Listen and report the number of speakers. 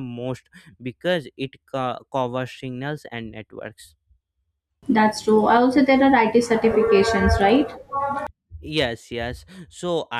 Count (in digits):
2